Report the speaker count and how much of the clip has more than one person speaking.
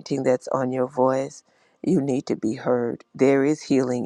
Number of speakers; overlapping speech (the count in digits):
1, no overlap